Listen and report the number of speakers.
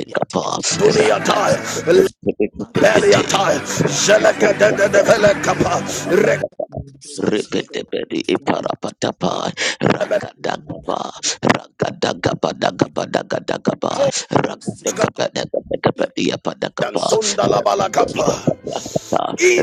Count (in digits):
3